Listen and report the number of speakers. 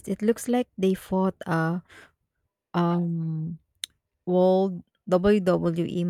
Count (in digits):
1